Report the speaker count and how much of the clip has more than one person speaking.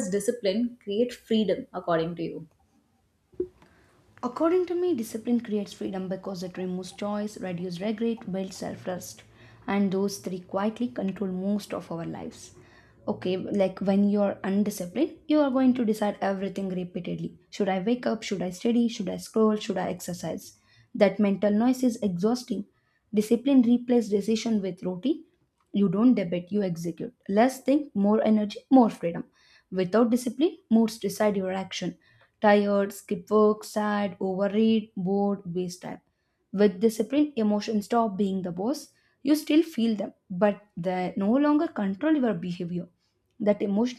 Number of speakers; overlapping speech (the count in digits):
2, no overlap